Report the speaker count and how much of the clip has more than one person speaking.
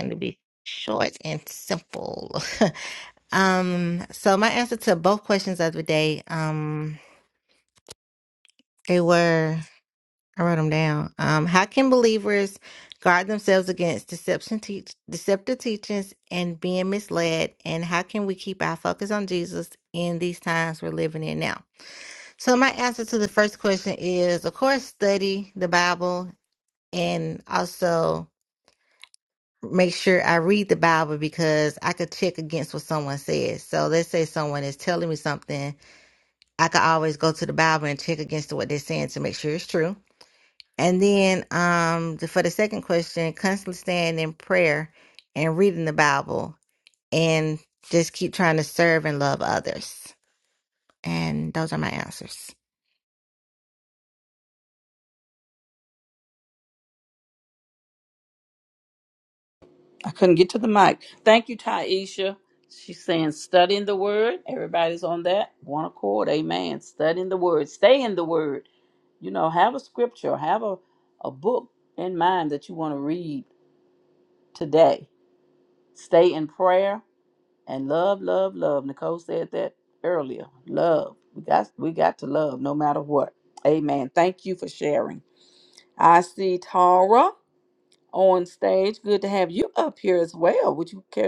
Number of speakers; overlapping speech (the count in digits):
2, no overlap